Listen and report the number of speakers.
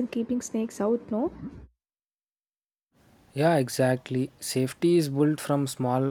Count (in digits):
2